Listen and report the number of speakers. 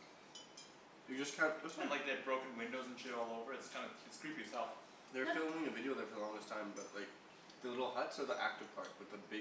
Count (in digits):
2